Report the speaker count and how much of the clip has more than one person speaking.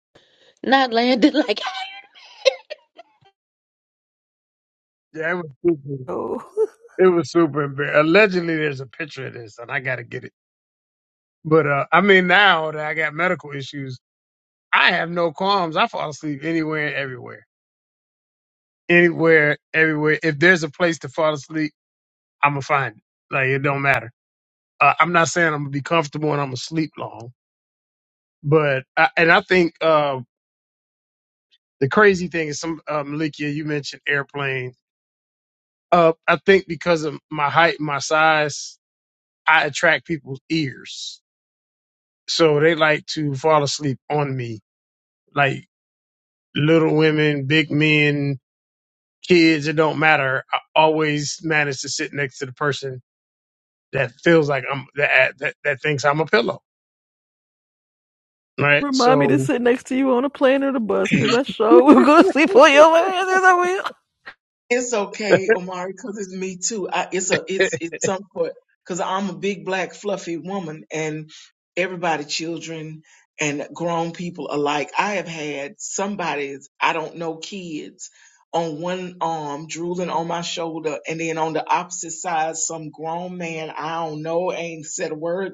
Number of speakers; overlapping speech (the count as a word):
four, about 1%